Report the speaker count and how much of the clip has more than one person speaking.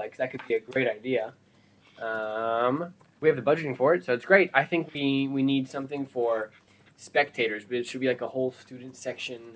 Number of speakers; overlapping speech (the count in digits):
1, no overlap